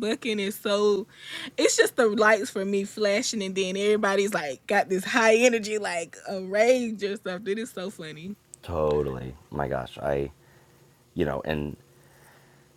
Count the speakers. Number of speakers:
2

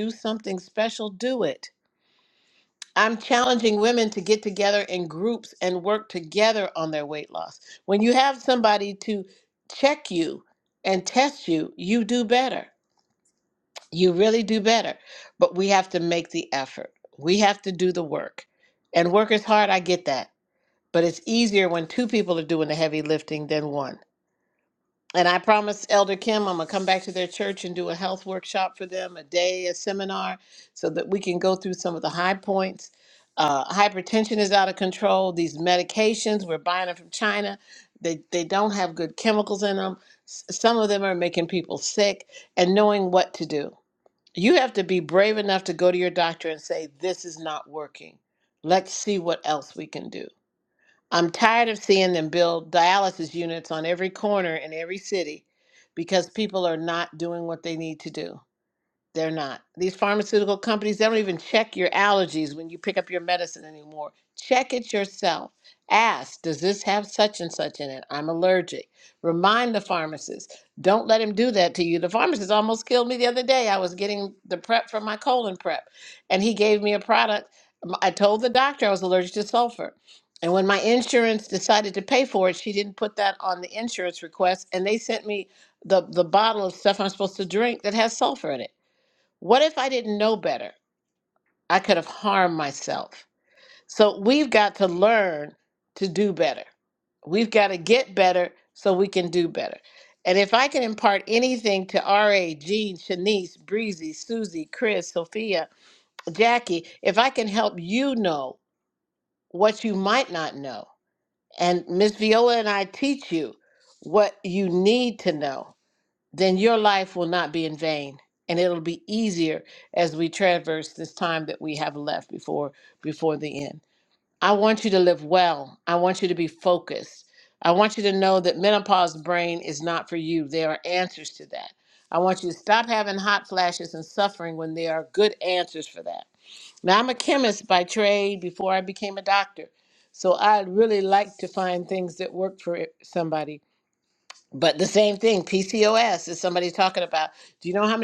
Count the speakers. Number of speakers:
1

